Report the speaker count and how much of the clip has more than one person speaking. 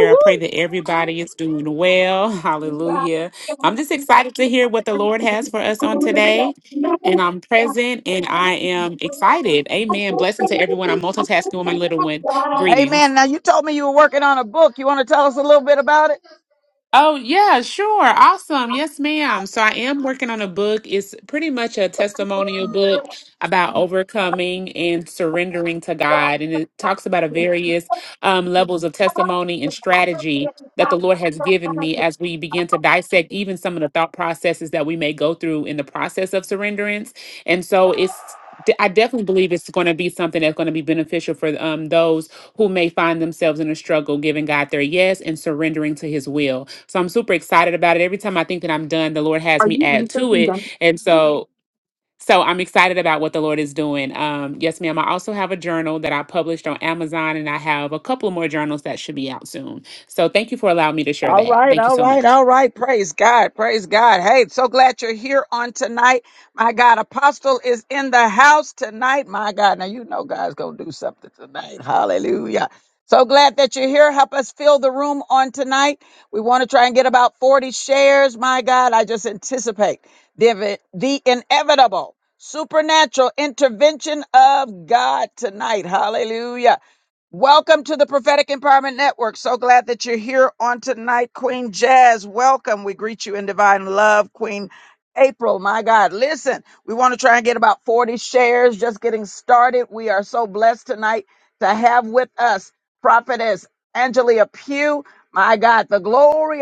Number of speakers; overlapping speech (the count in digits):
2, about 1%